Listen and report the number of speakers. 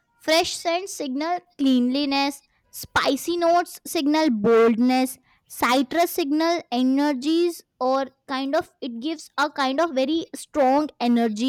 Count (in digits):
1